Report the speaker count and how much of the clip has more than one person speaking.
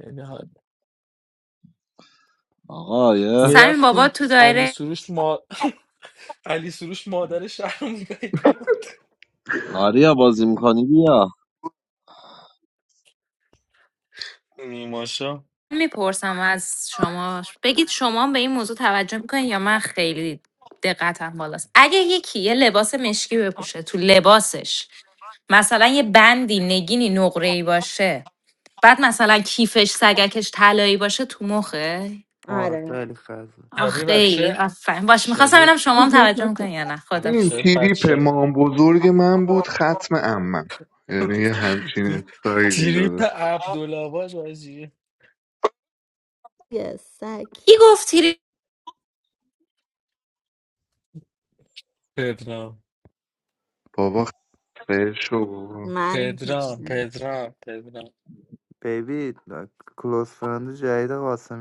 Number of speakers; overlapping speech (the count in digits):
6, about 9%